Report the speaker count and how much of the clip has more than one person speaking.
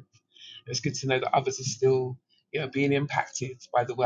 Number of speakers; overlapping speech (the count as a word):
one, no overlap